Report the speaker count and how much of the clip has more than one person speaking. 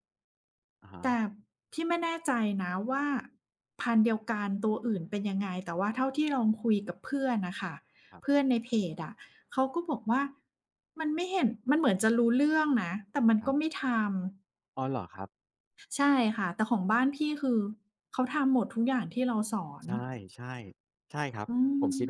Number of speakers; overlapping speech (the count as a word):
two, about 2%